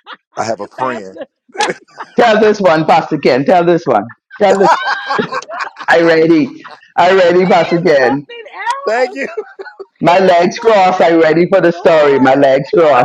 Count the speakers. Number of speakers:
three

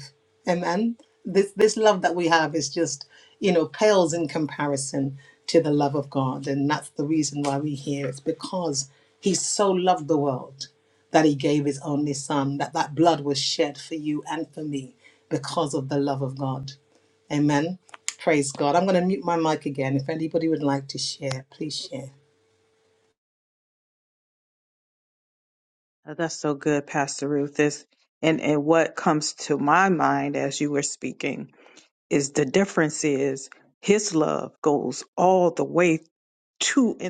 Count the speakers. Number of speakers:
two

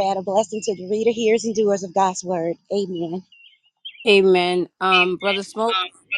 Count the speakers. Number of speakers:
two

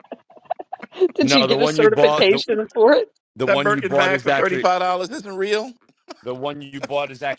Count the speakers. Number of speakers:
three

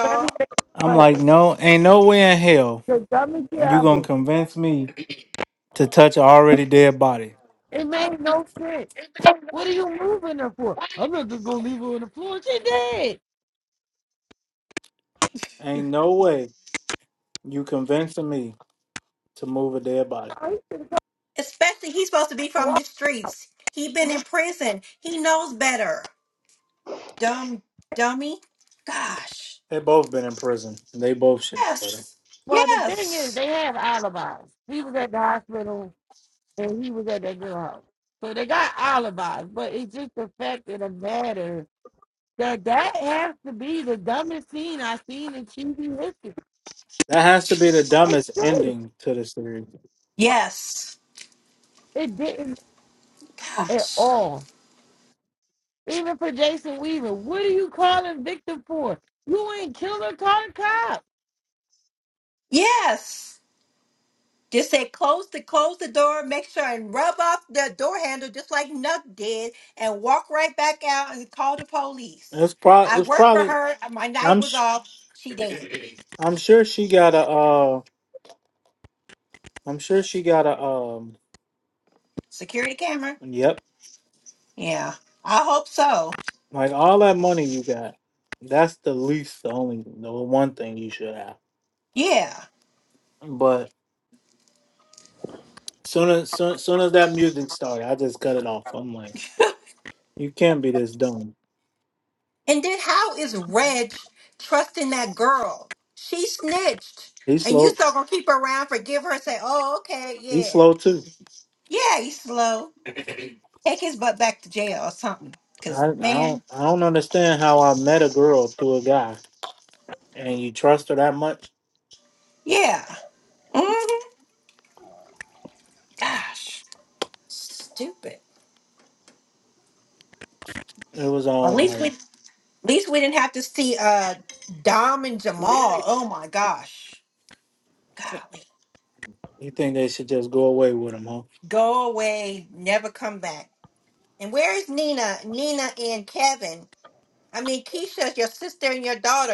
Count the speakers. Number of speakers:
three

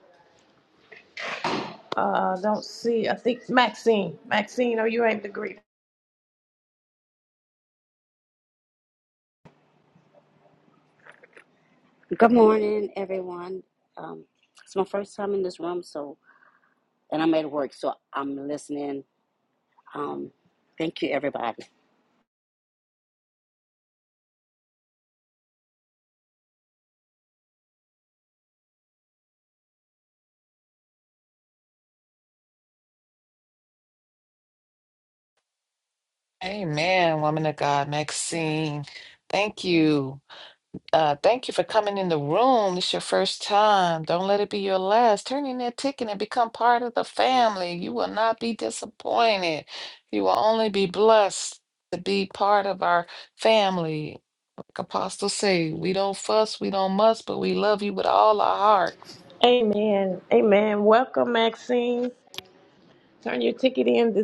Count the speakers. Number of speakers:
three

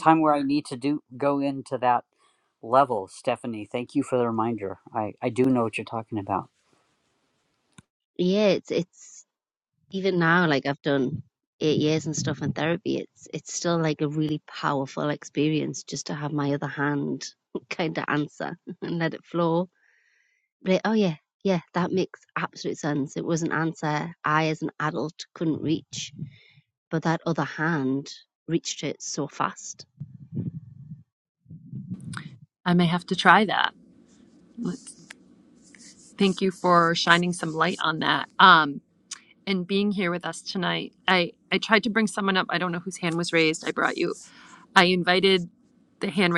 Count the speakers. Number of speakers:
three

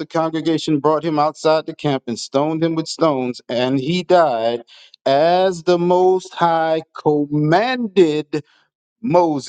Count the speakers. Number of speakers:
one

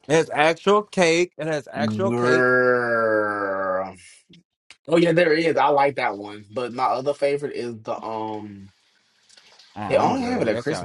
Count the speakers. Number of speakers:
two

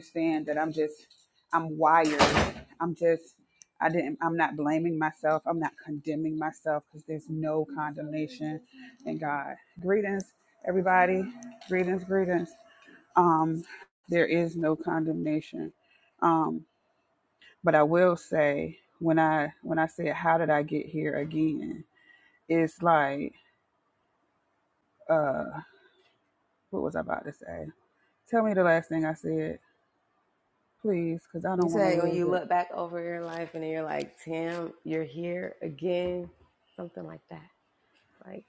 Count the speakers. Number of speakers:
two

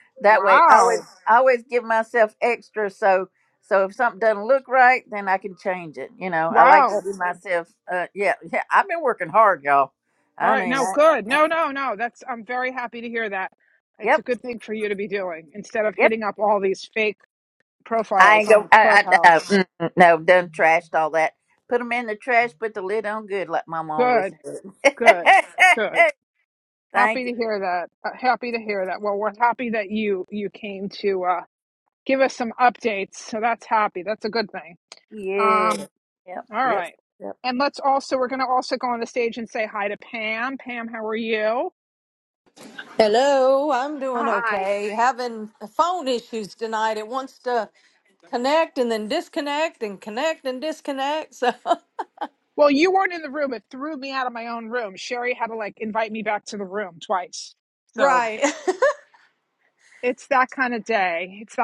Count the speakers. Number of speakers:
three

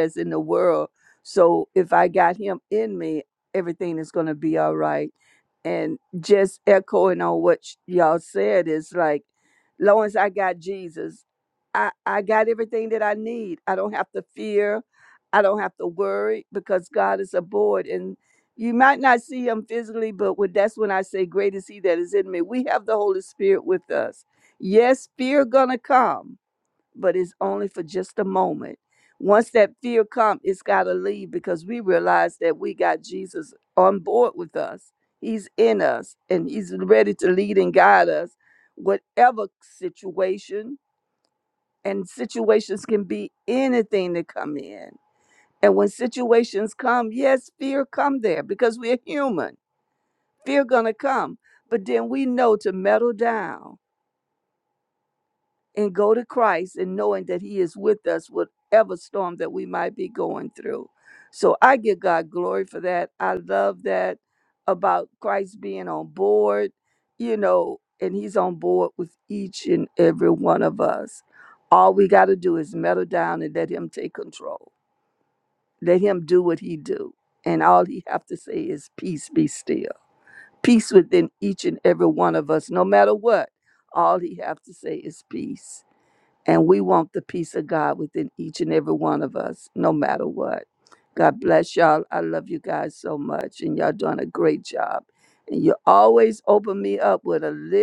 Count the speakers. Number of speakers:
one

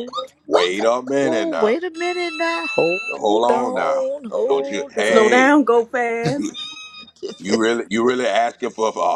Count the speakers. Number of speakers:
three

